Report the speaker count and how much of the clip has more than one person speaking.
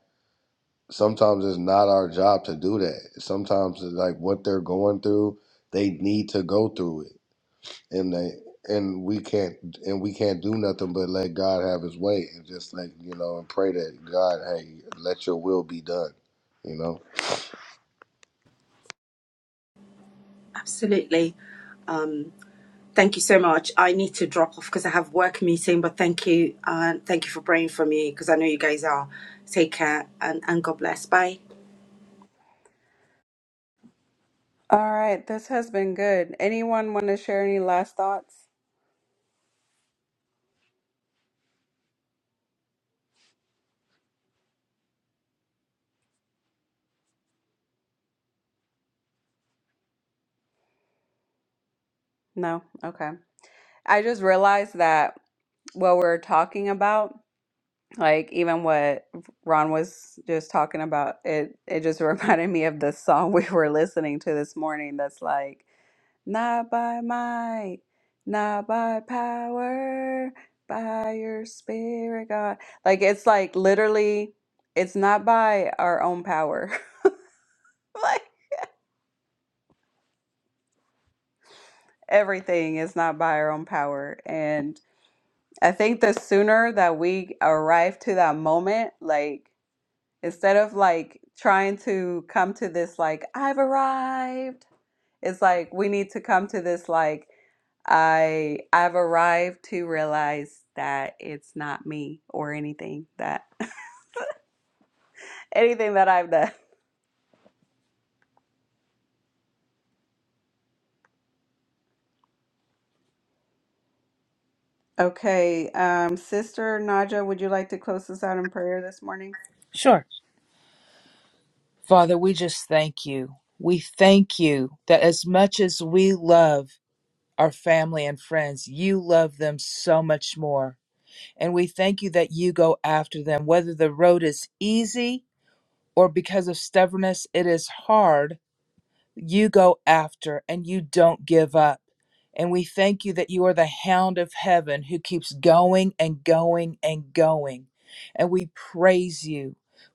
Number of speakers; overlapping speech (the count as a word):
four, no overlap